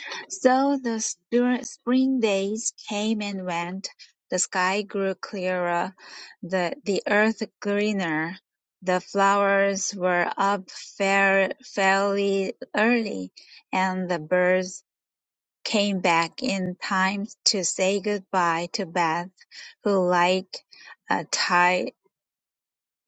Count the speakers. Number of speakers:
1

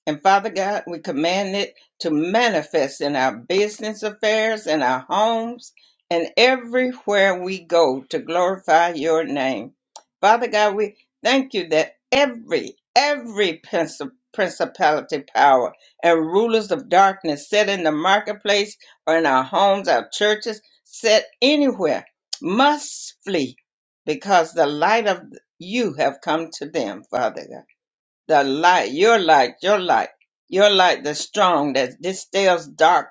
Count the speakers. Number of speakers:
1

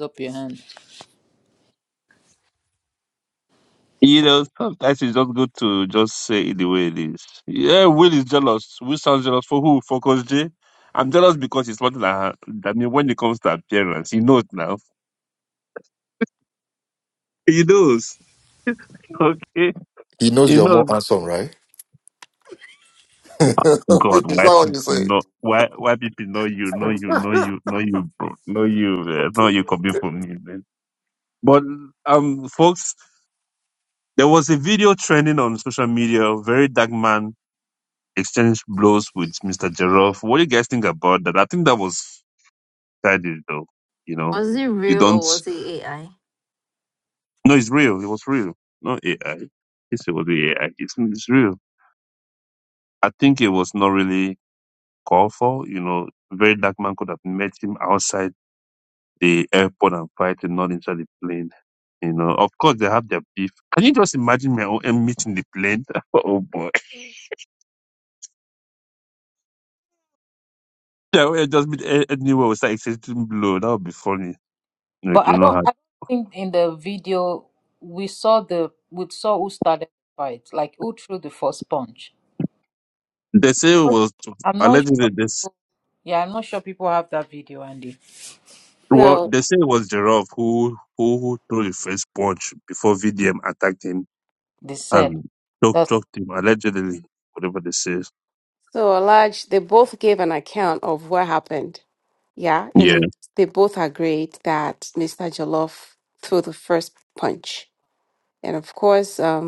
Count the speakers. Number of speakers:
5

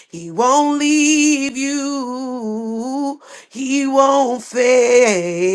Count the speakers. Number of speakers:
1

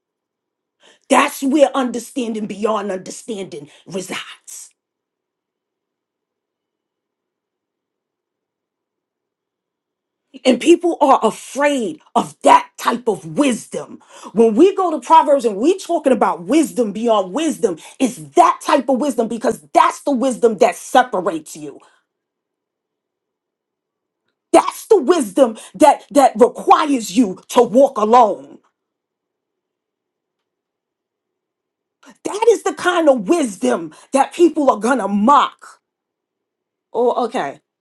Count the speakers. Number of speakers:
1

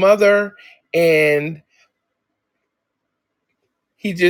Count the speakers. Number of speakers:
1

